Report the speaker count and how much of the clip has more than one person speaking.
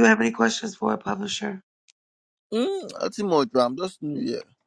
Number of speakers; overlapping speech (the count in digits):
2, no overlap